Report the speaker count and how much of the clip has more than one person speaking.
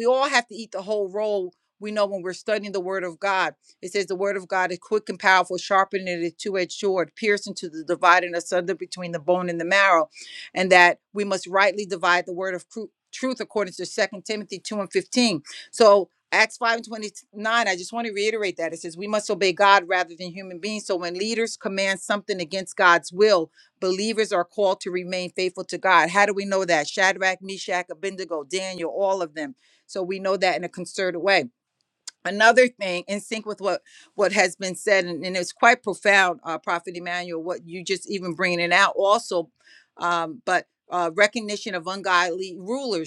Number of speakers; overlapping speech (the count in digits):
1, no overlap